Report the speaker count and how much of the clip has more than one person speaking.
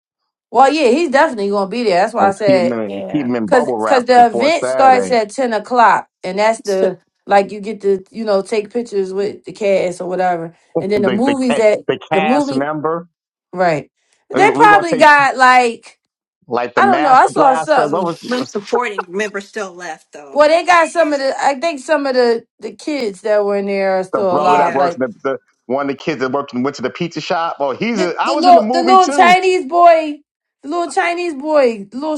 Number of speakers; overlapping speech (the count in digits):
3, about 27%